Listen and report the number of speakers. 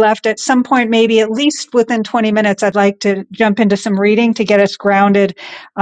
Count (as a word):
one